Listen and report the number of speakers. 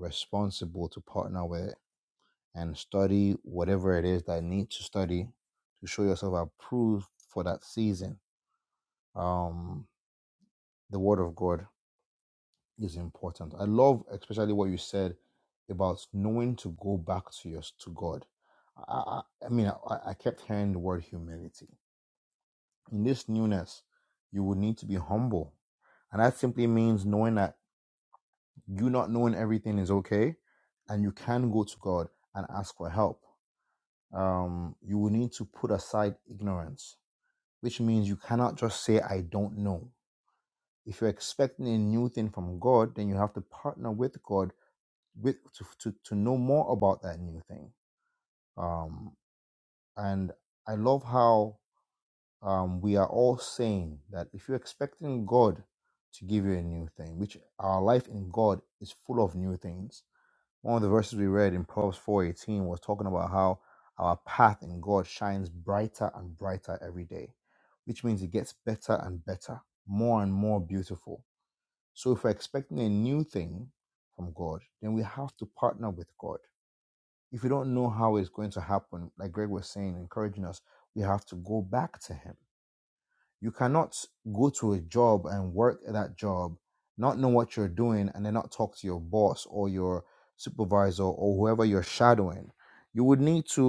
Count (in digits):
1